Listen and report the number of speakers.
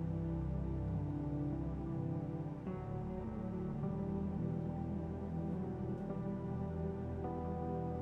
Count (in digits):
0